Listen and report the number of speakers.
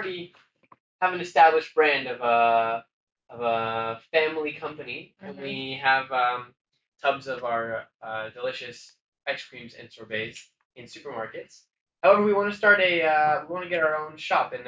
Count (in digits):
1